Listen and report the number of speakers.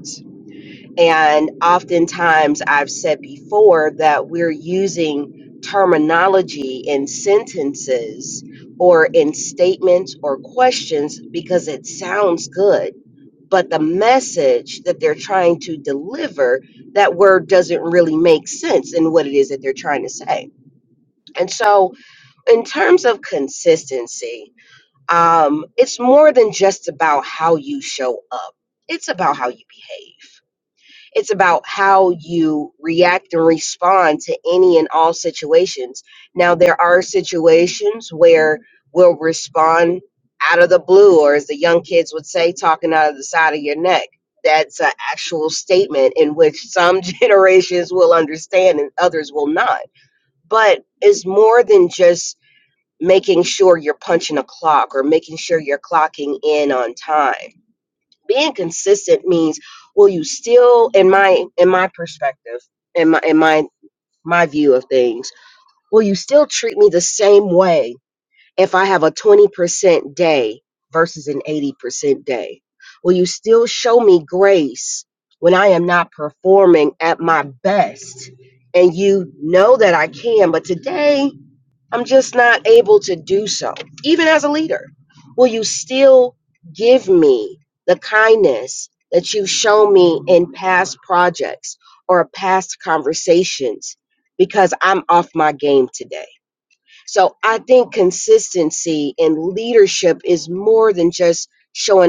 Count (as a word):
one